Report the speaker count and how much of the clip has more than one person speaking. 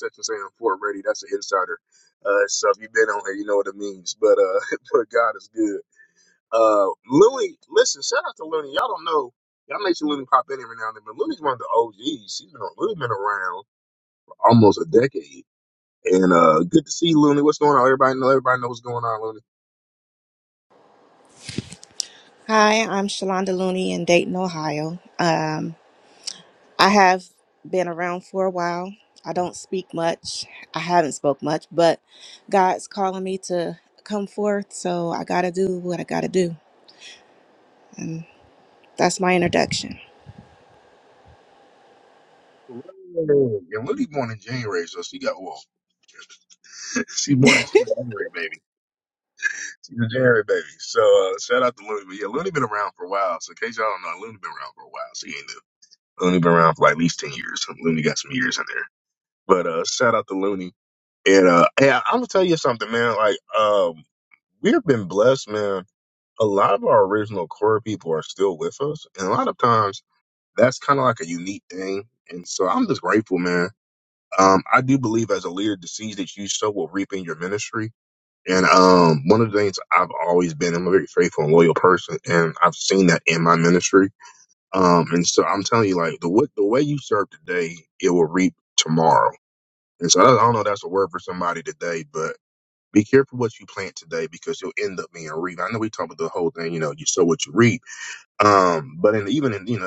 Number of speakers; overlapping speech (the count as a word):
two, no overlap